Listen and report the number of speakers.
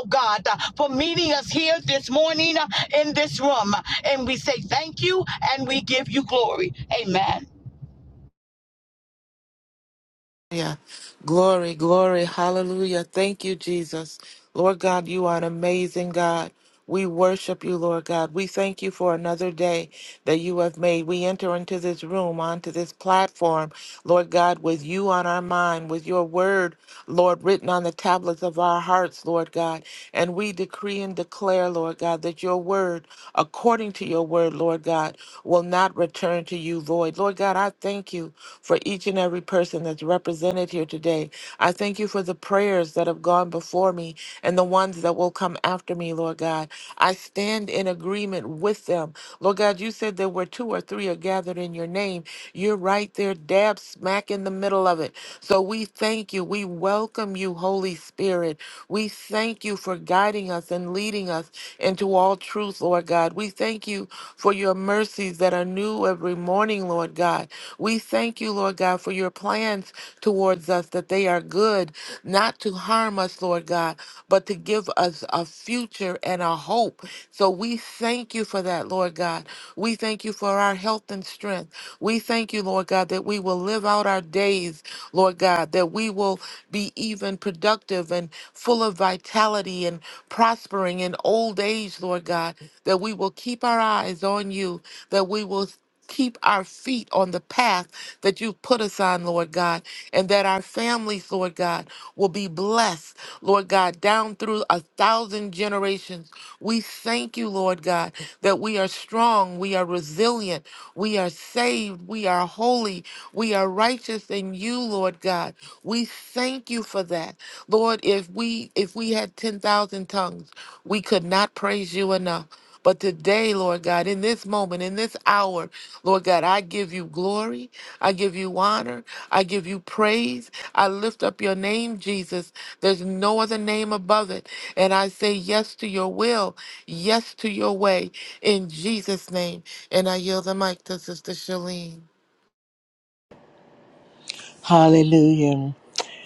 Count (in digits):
3